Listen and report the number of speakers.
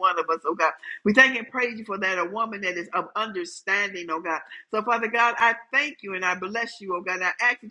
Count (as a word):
one